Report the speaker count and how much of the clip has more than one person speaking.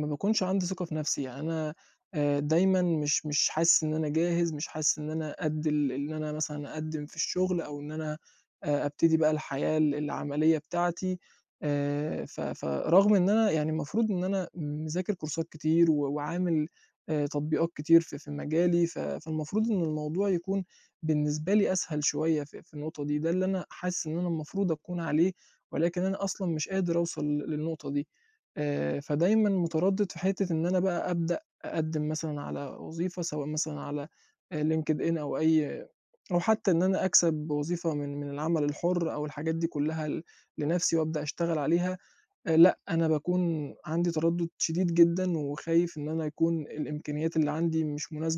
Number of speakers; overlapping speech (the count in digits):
1, no overlap